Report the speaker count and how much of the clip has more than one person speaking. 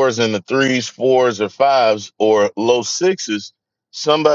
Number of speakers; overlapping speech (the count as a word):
one, no overlap